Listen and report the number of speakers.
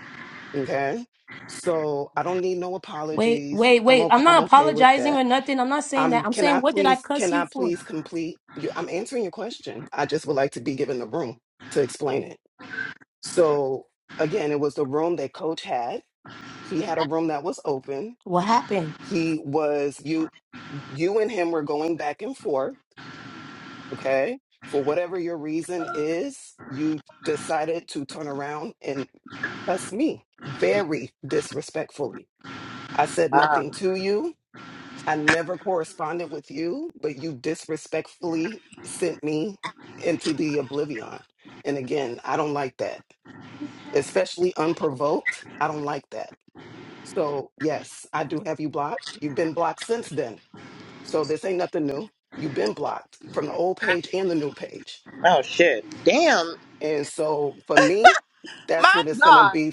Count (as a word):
three